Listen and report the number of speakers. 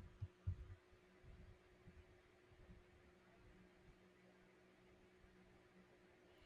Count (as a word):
zero